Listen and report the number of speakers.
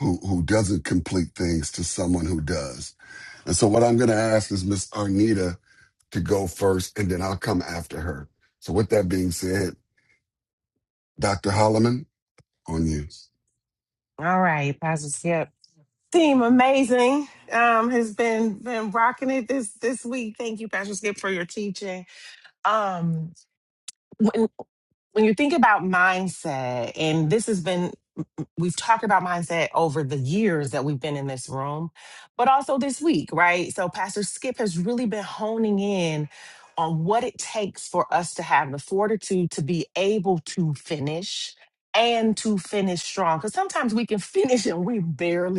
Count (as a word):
two